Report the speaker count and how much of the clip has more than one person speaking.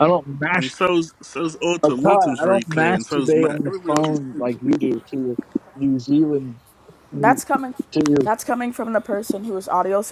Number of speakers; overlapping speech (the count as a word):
three, about 30%